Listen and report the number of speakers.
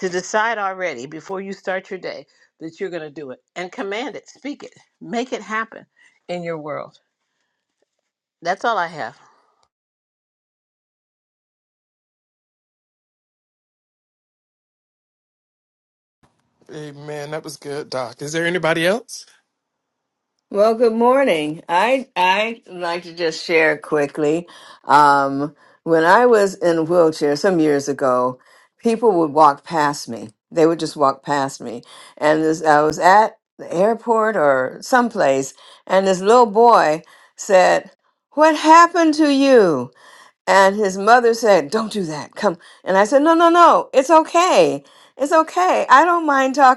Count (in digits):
3